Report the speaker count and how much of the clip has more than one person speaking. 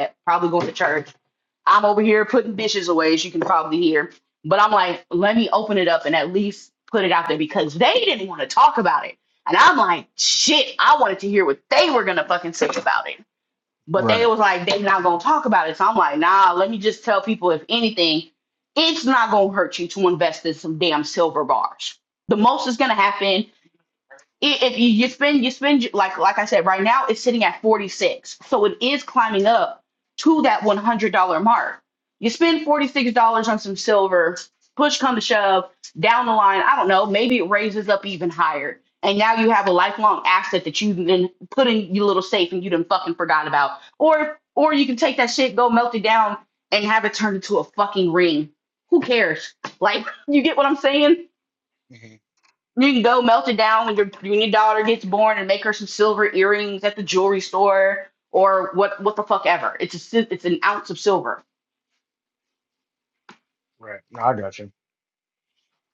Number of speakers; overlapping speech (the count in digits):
2, under 1%